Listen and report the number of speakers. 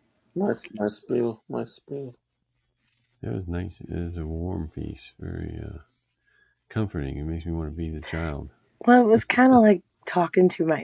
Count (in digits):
3